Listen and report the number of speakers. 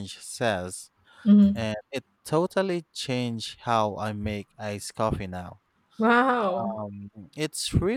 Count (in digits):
2